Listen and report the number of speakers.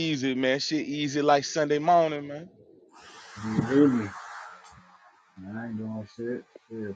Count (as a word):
two